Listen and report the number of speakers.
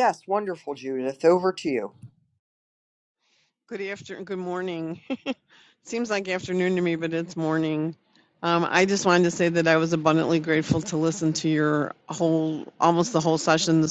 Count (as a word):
two